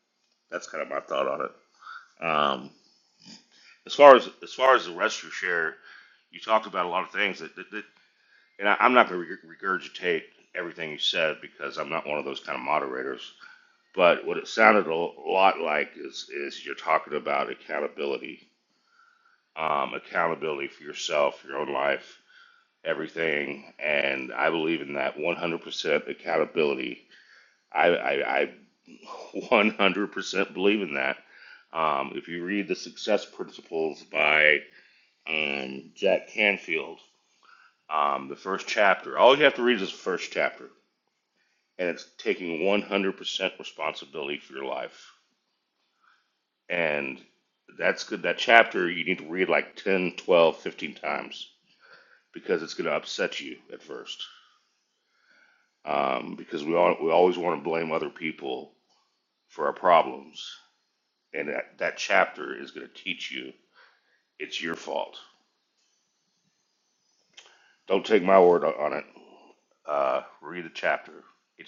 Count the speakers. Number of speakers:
one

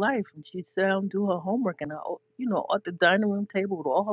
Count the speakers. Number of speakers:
one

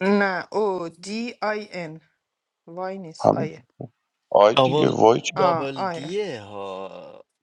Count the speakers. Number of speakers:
three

